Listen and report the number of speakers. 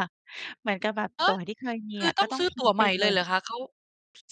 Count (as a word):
two